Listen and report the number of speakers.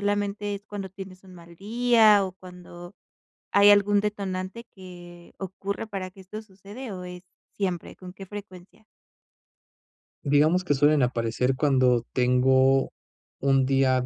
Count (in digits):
2